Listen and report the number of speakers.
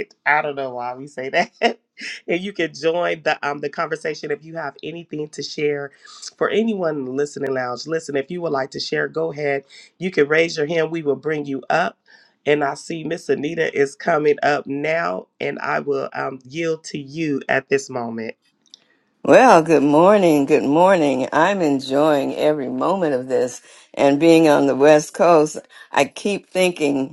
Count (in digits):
2